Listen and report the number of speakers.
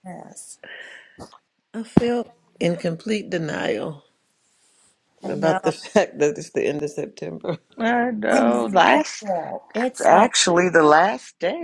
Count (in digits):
3